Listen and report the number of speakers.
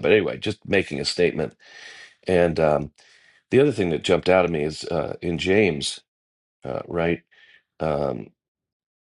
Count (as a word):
one